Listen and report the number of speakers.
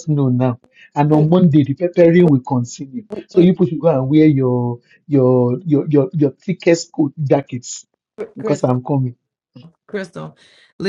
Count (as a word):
two